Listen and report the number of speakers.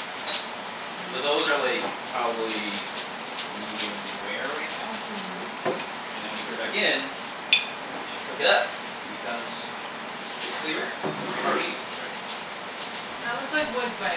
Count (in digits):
2